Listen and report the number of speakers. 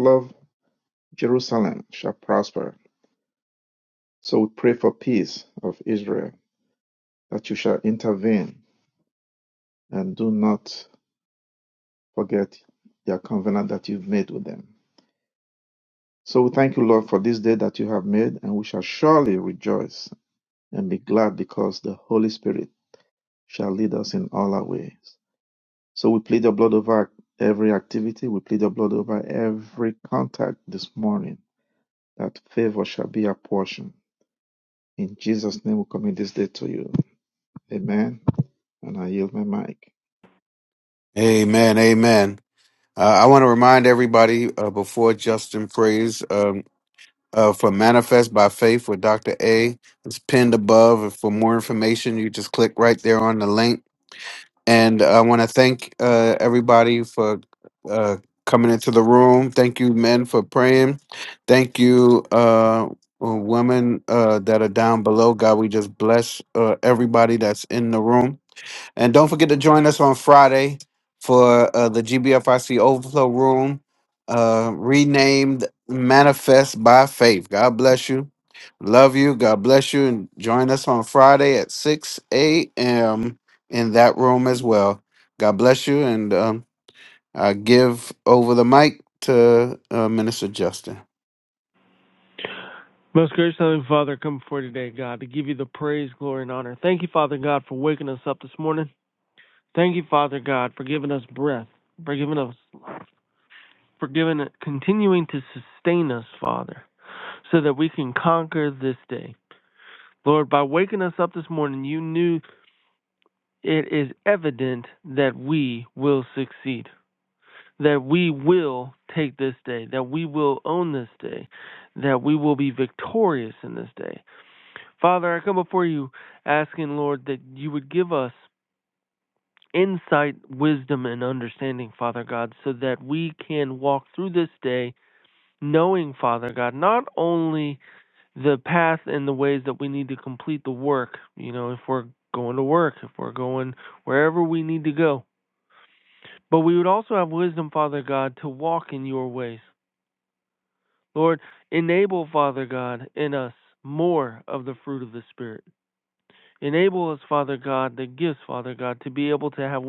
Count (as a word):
three